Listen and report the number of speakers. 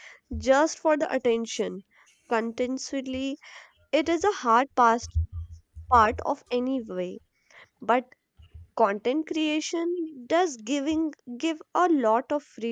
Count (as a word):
one